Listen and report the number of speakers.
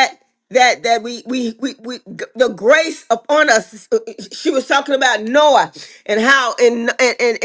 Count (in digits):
1